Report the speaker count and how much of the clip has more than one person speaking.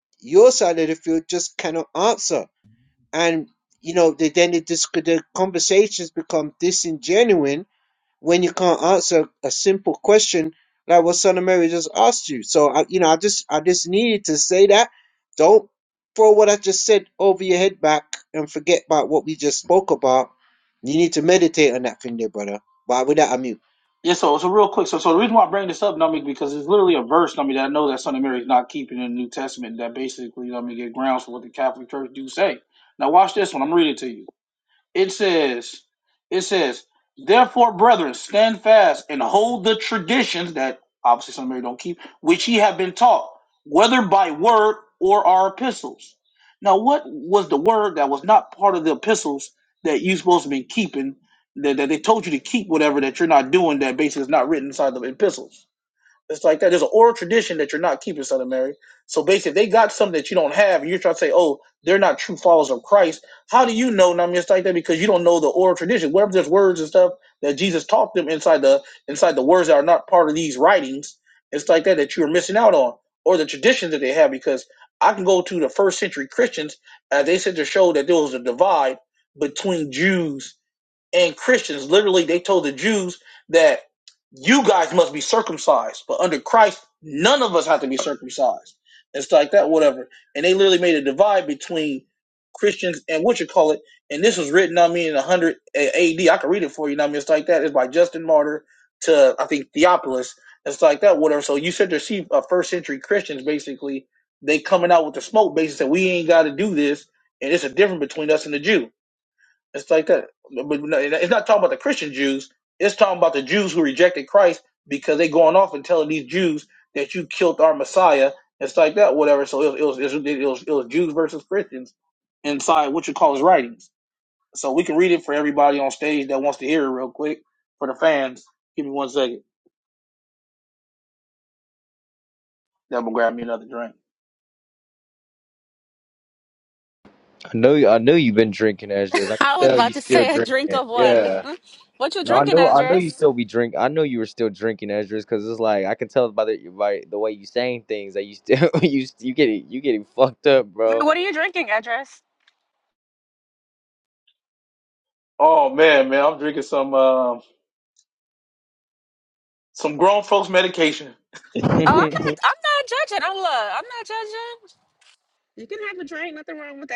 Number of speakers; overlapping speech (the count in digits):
4, about 2%